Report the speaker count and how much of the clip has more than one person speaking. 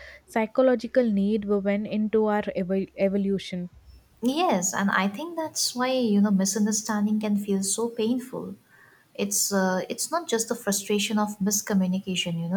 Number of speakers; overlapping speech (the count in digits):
2, no overlap